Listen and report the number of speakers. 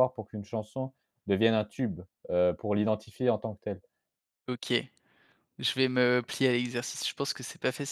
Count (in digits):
2